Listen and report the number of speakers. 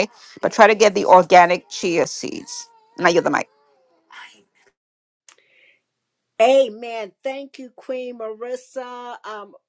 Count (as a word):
two